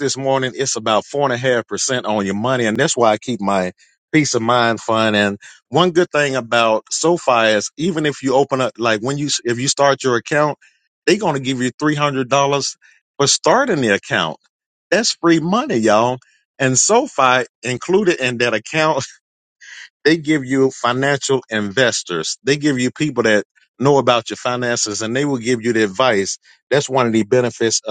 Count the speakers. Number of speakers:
one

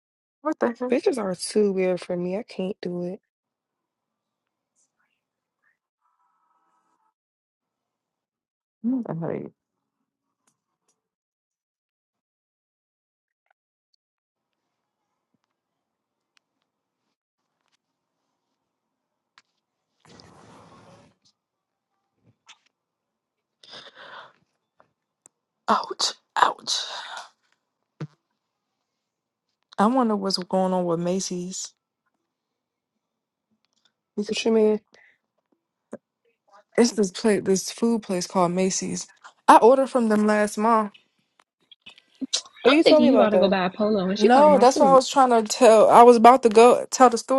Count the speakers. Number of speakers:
three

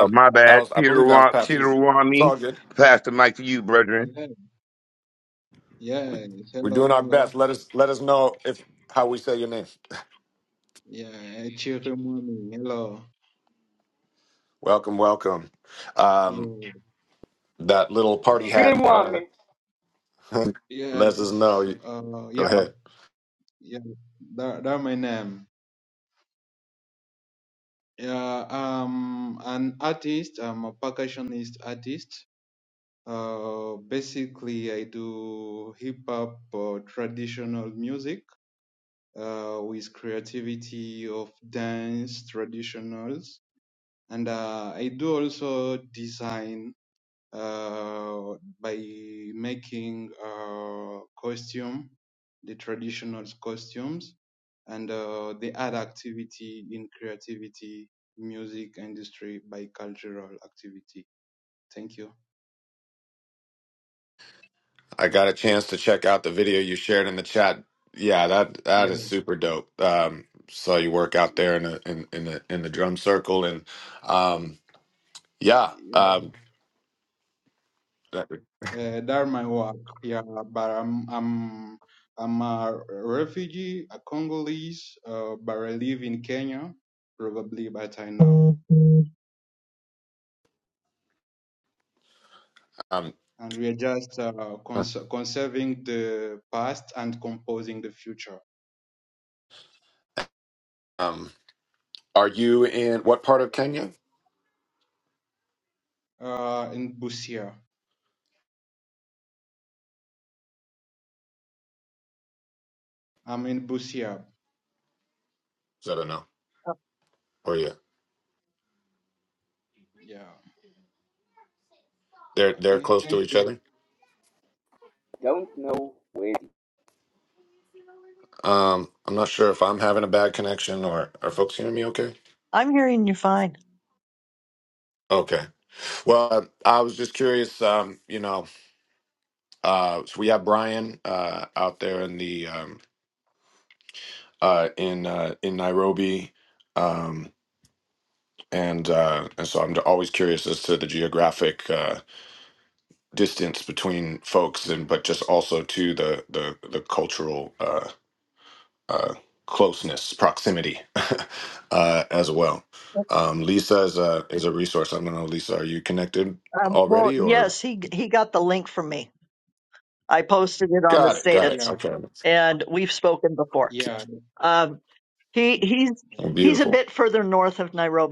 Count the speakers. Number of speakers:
five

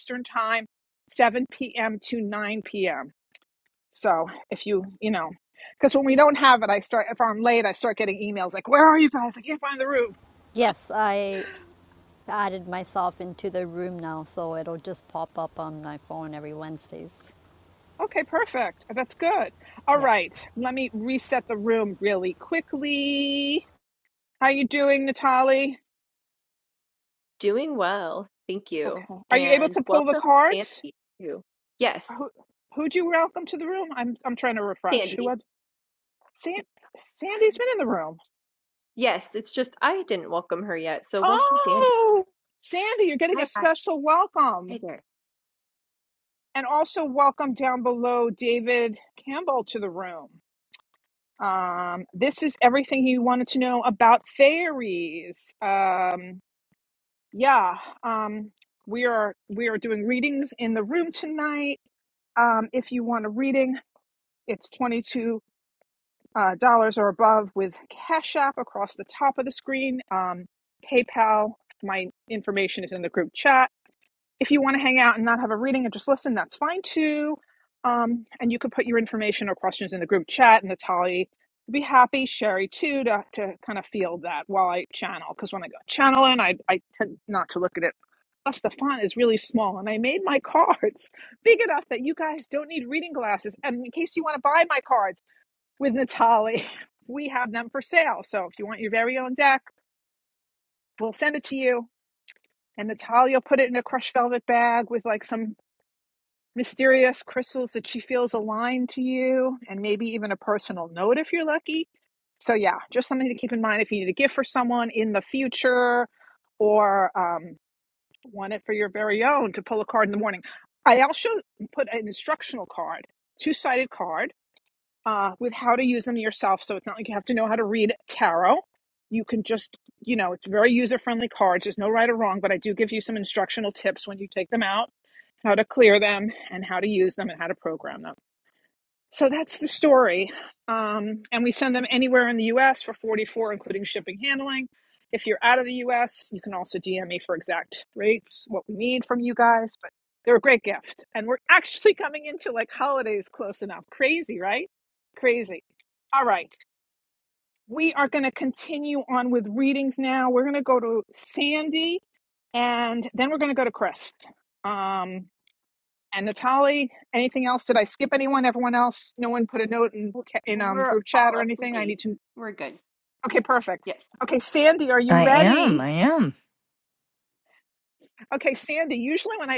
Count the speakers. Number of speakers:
four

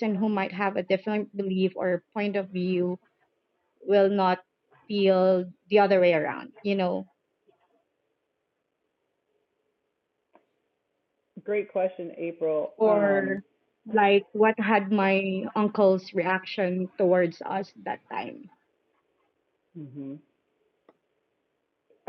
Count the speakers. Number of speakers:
two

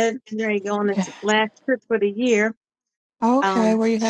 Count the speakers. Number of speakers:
two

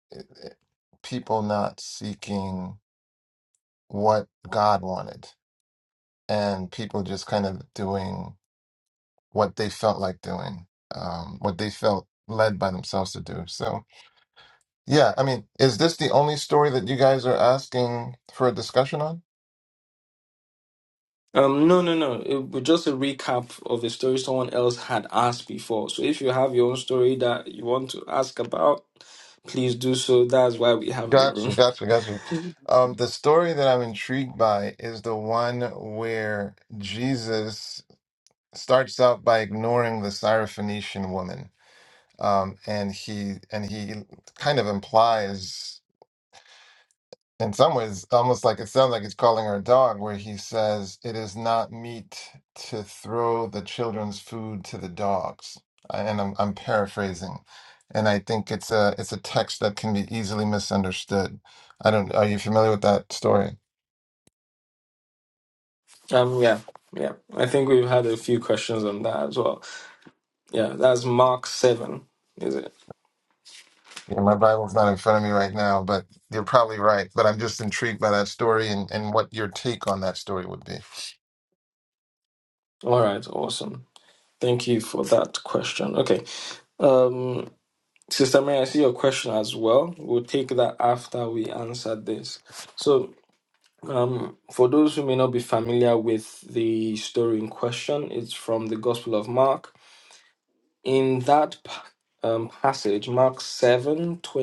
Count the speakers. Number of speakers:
two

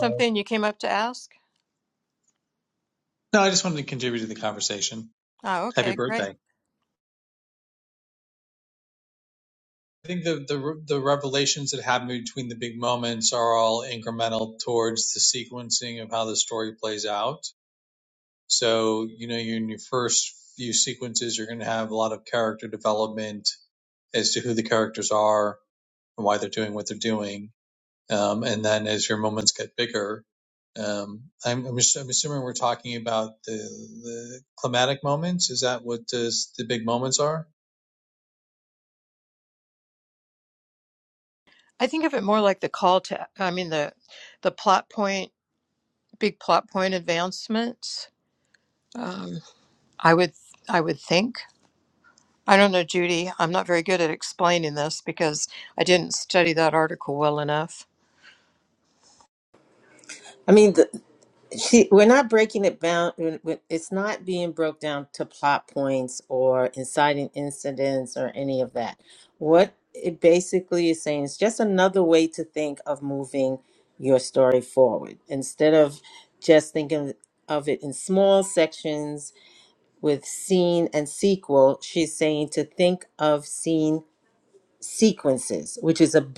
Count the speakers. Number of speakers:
three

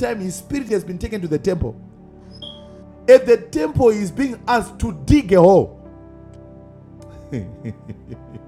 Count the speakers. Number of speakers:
one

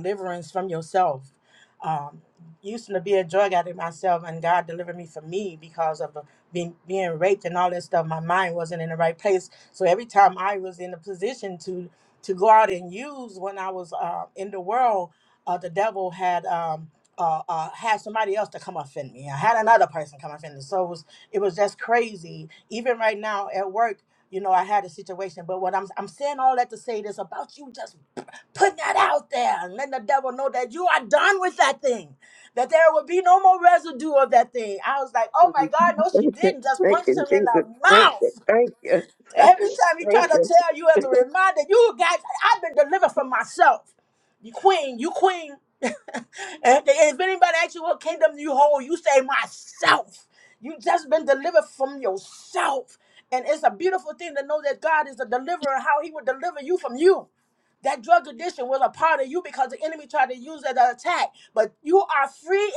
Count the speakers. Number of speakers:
two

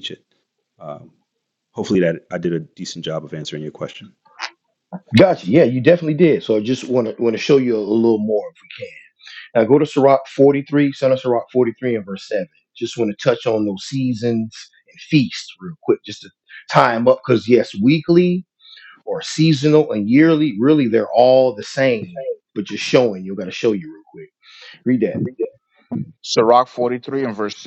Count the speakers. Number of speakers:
three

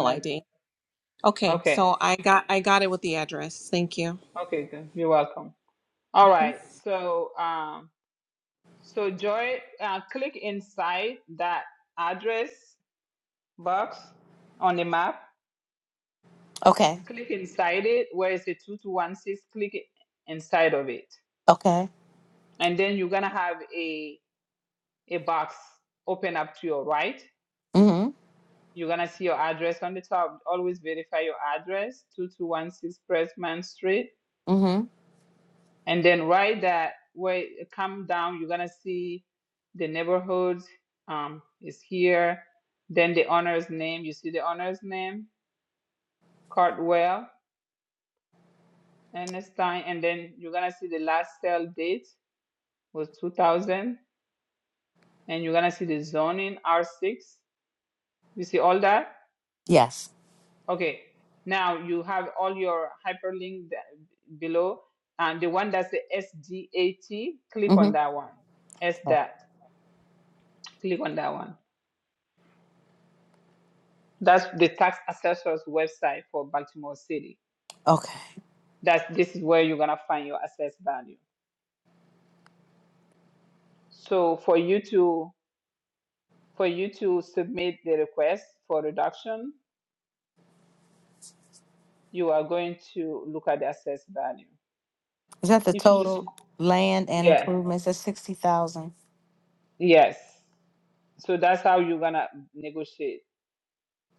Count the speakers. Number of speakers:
three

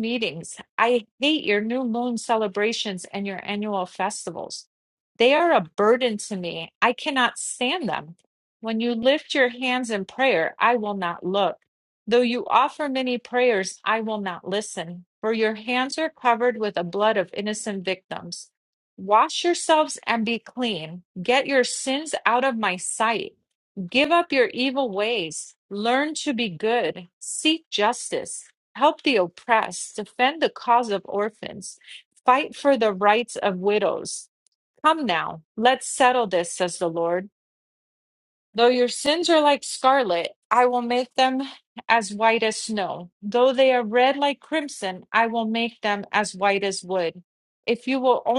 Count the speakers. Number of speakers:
one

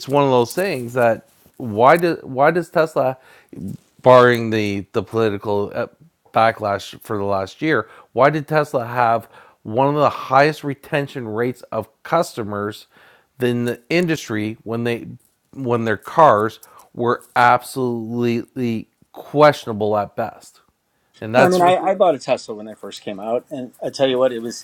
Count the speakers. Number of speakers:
two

